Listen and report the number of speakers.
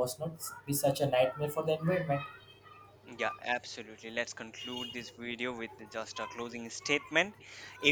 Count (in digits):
2